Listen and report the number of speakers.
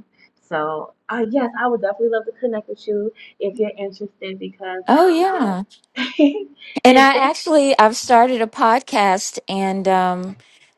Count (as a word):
two